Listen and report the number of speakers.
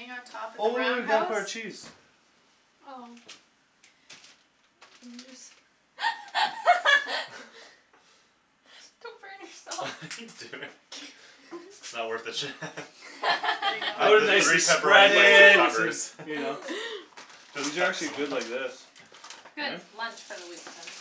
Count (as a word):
four